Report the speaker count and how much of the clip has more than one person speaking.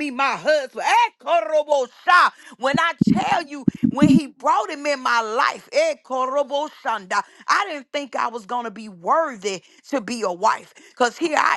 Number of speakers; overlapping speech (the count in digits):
1, no overlap